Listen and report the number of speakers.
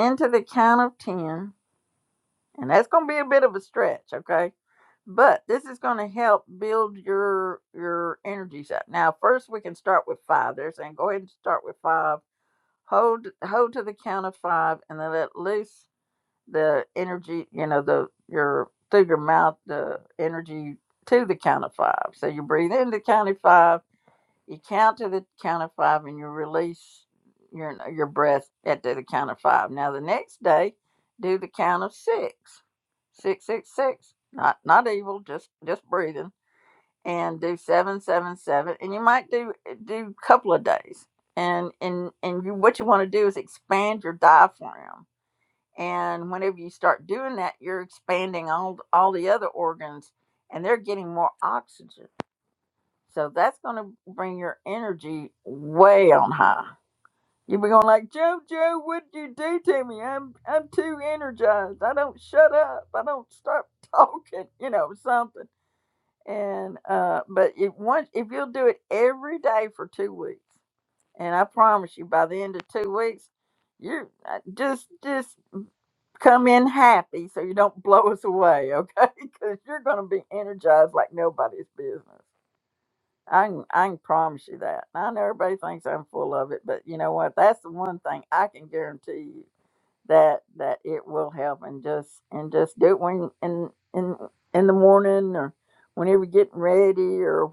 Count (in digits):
1